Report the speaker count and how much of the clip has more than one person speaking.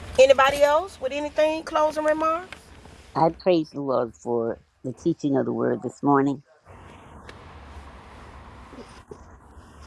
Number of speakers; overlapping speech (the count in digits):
2, no overlap